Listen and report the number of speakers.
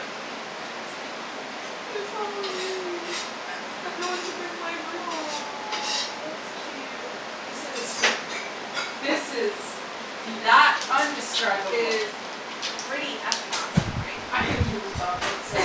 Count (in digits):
2